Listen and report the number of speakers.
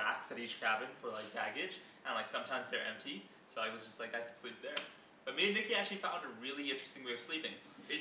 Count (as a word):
one